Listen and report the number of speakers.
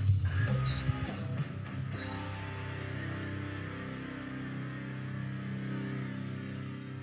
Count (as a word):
zero